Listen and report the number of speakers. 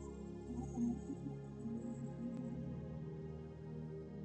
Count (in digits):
0